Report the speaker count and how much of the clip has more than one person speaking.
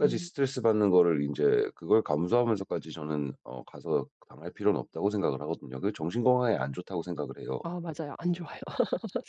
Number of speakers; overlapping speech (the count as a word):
two, about 3%